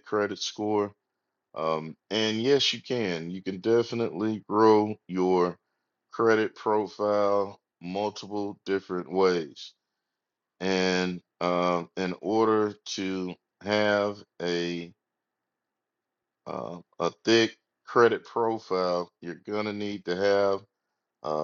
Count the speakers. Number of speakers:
1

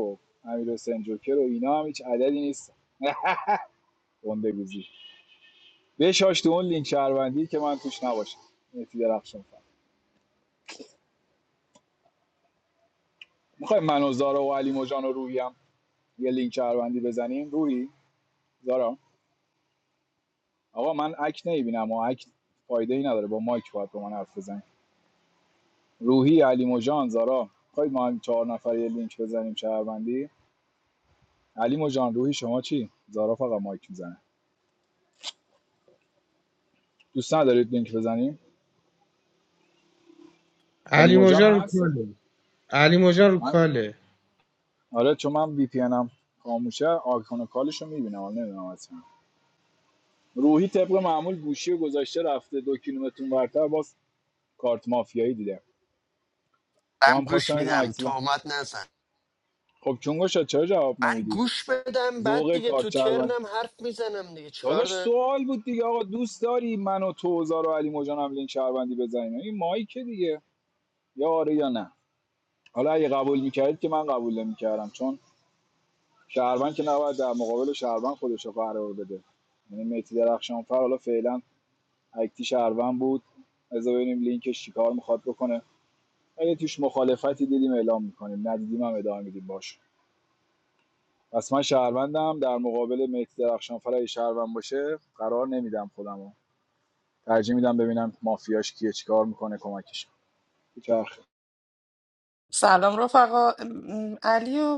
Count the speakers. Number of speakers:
4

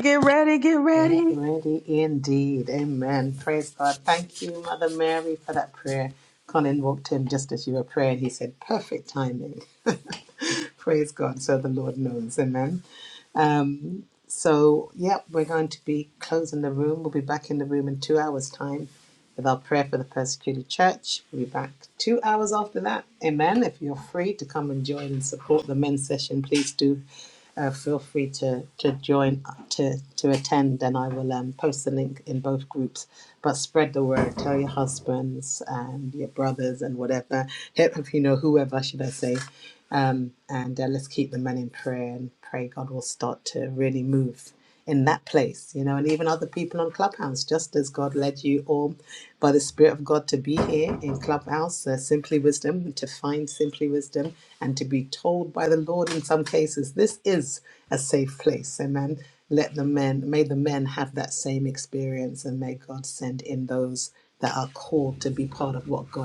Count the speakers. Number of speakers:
2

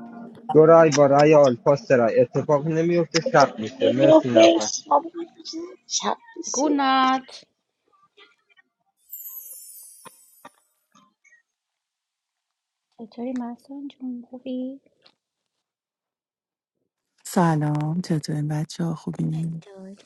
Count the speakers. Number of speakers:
4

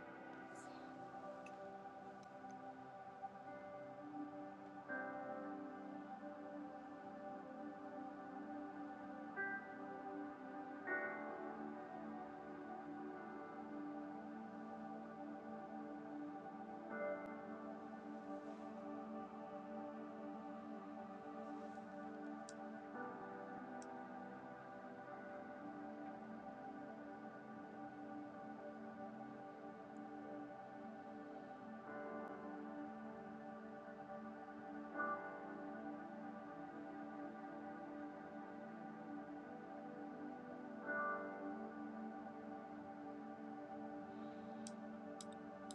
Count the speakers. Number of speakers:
0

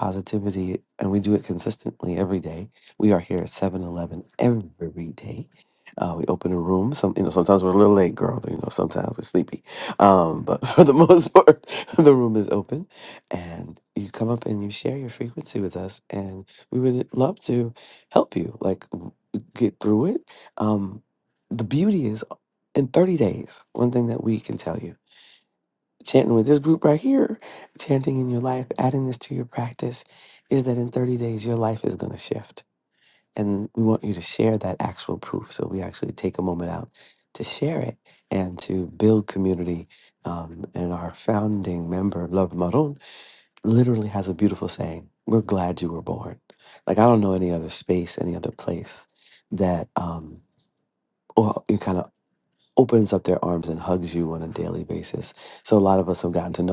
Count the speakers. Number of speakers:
1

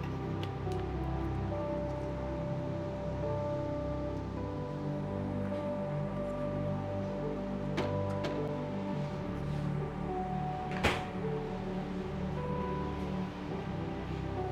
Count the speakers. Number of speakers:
0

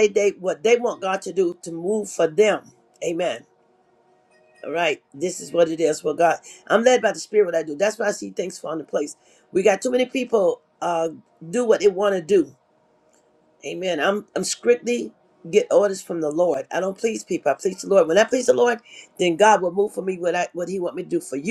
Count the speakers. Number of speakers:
1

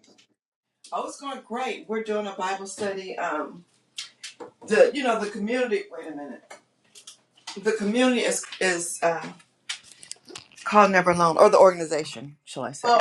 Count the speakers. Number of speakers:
1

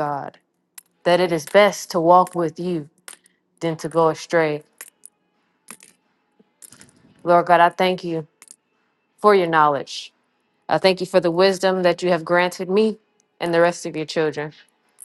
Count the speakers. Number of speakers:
1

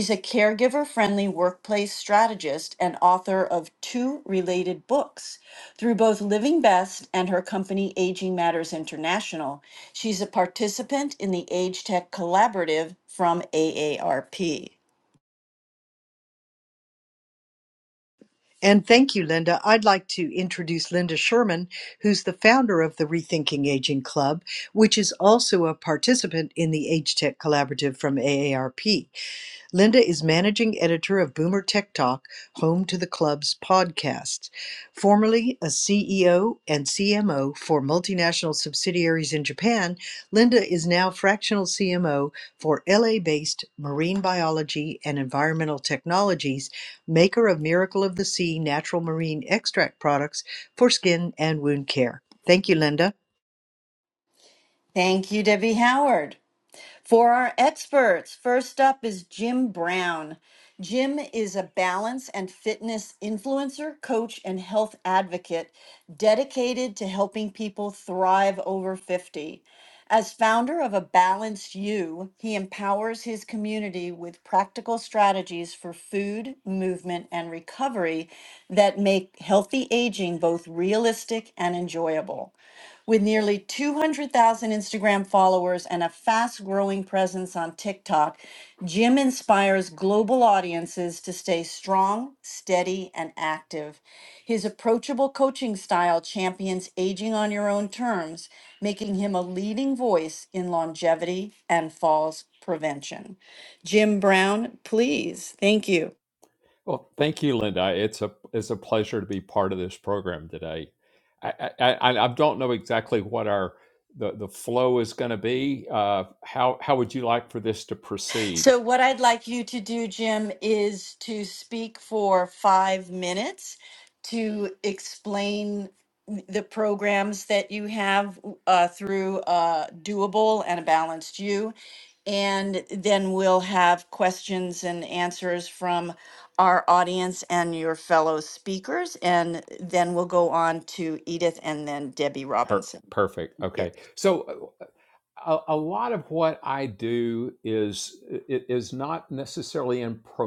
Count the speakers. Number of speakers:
3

